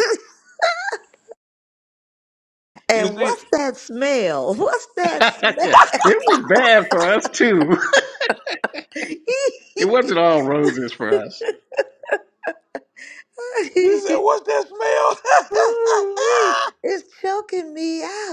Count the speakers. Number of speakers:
three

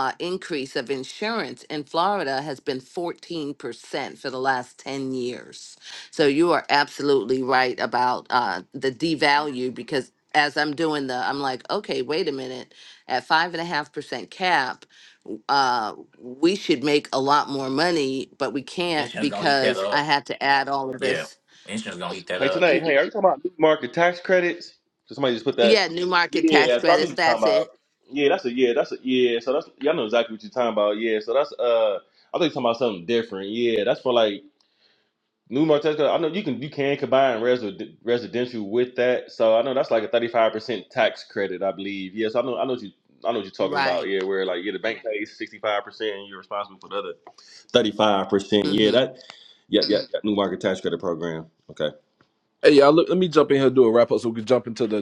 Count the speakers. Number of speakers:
four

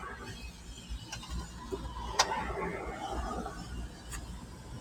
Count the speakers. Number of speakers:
zero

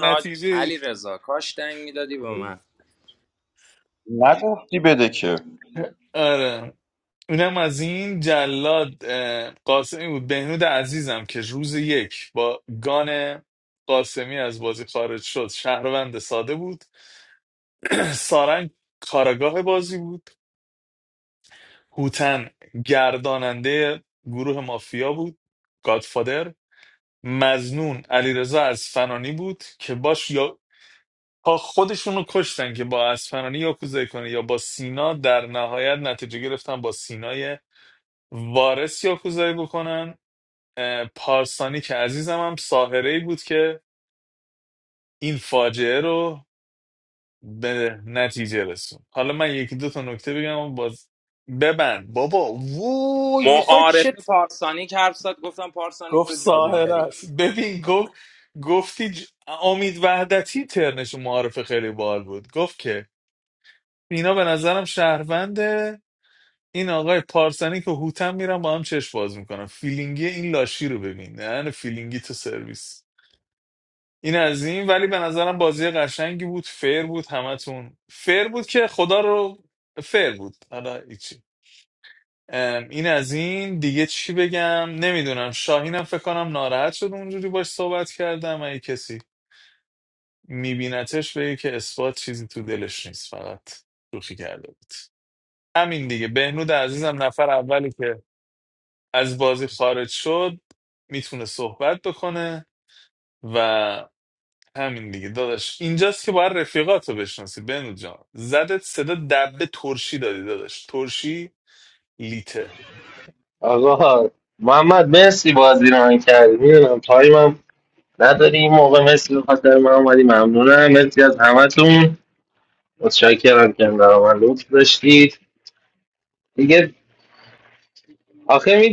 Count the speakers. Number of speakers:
four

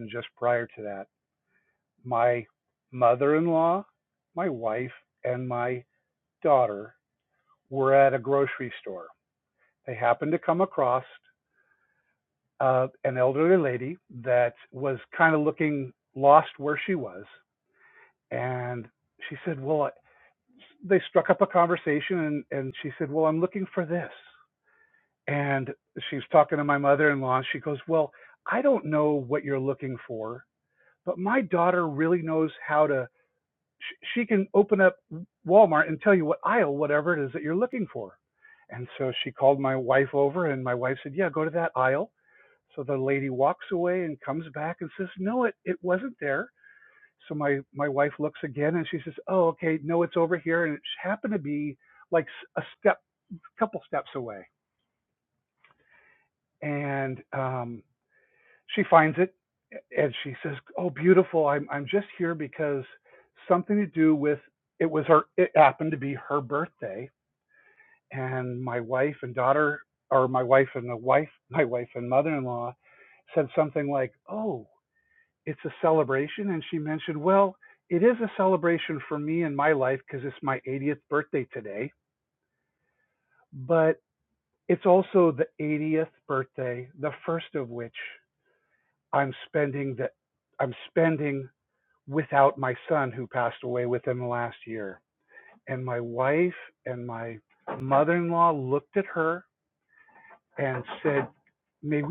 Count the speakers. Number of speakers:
one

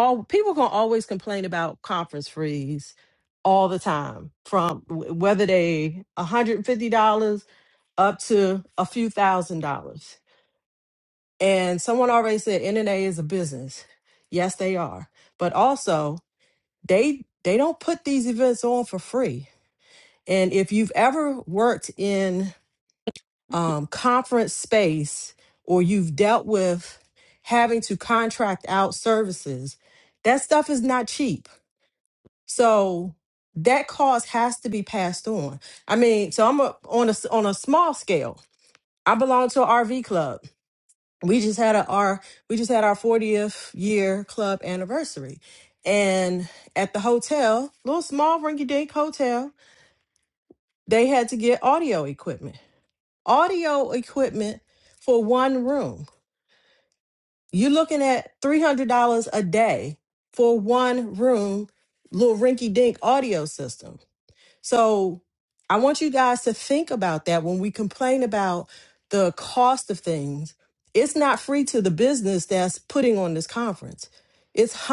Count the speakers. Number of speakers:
one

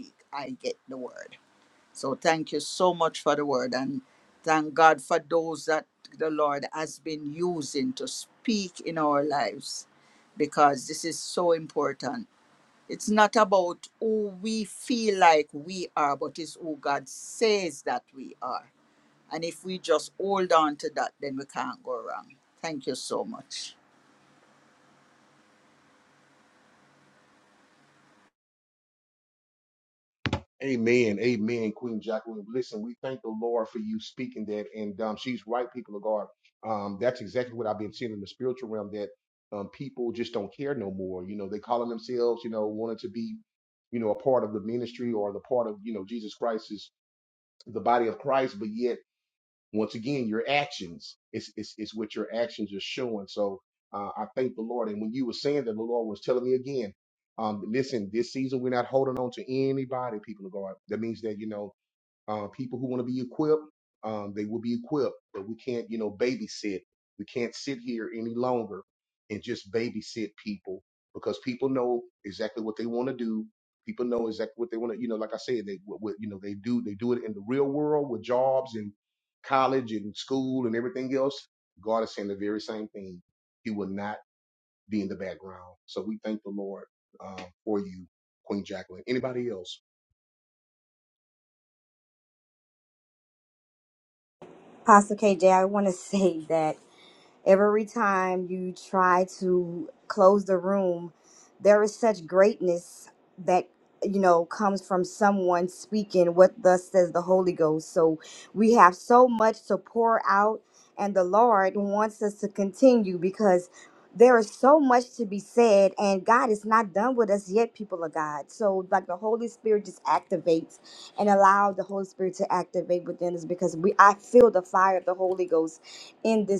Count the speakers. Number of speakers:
three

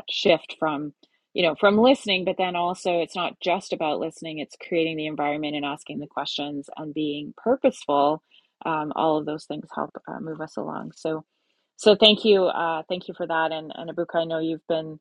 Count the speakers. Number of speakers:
one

